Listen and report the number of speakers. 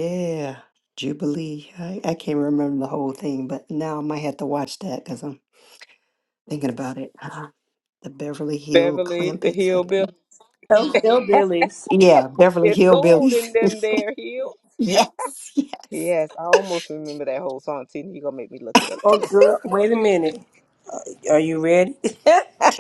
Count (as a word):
three